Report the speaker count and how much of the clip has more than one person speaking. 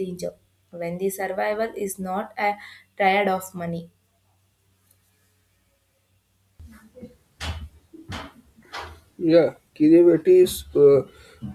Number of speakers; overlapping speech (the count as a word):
two, no overlap